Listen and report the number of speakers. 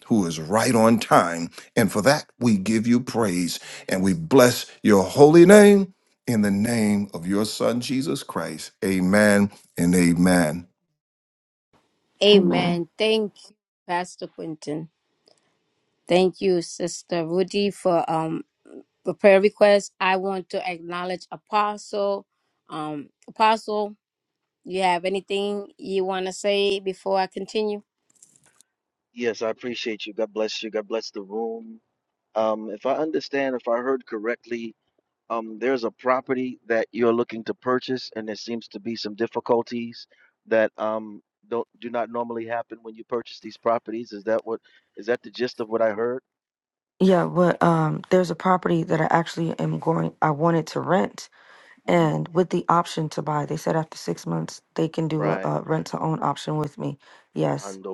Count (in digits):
4